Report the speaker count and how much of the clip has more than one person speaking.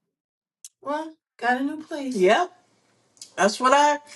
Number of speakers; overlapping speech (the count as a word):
two, under 1%